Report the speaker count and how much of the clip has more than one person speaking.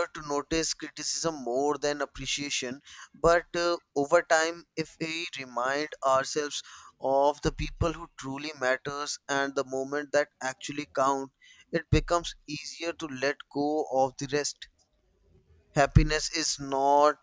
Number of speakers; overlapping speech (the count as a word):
one, no overlap